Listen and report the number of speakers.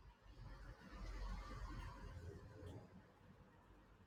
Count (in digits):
0